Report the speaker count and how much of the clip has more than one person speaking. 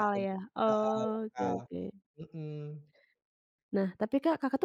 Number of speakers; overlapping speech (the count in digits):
2, about 34%